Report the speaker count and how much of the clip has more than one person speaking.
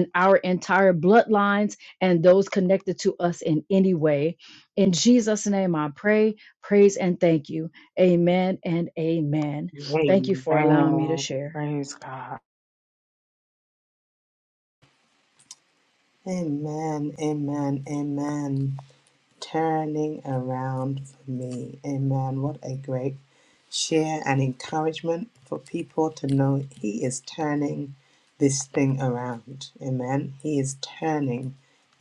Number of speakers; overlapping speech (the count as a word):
three, about 2%